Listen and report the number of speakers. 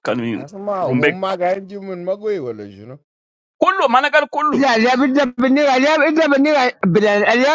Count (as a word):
three